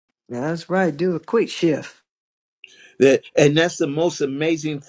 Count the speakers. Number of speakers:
two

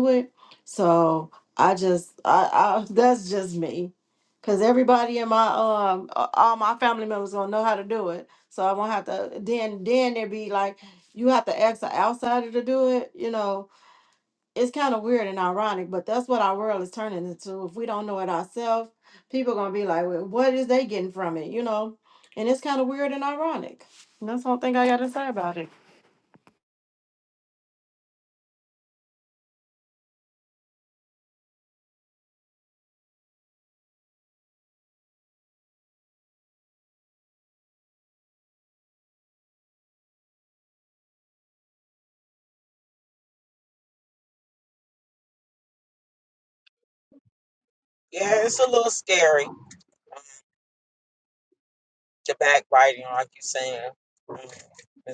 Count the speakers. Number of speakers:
two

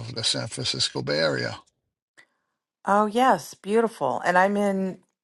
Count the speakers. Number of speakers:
two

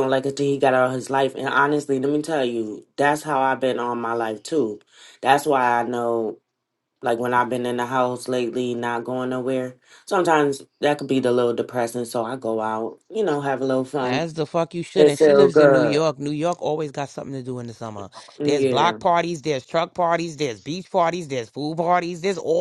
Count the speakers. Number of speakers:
two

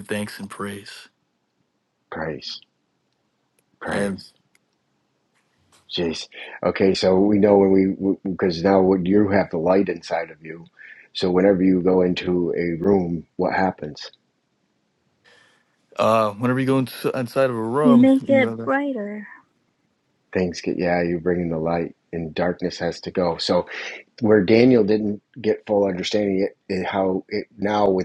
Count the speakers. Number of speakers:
three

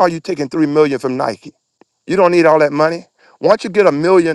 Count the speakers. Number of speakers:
one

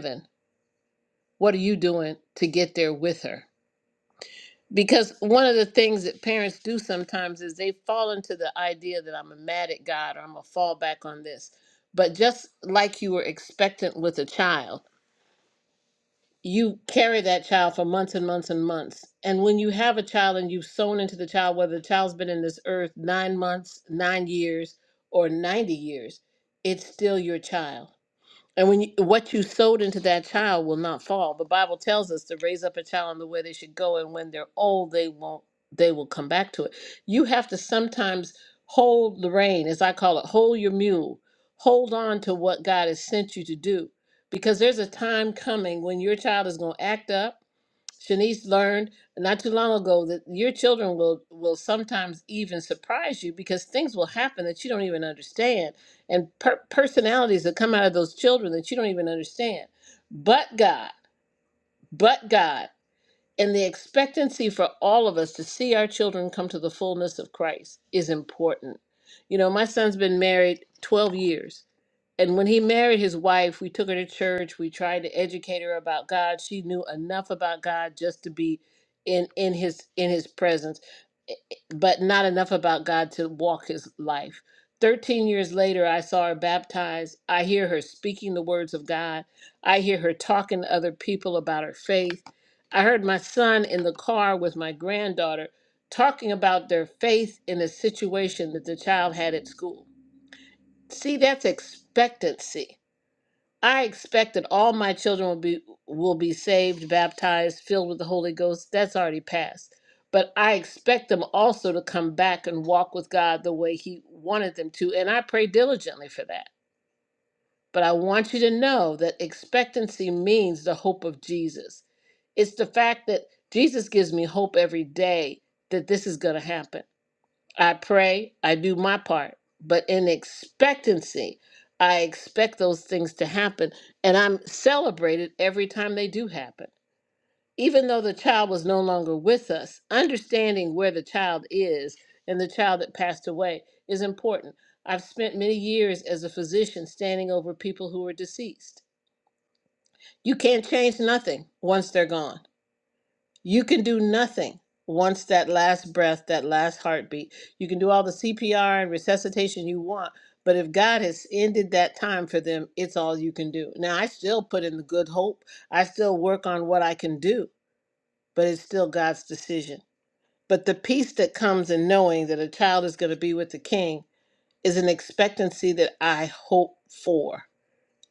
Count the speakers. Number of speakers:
one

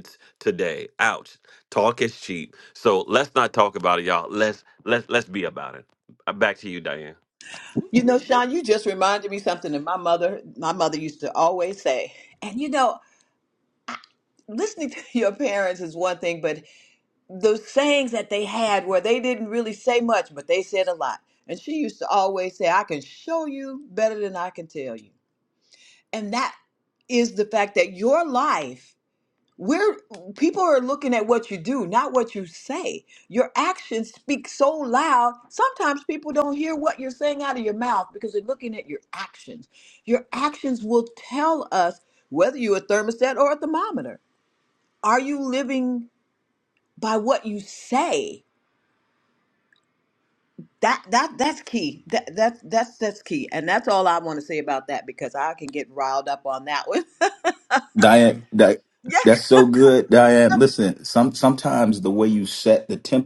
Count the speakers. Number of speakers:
three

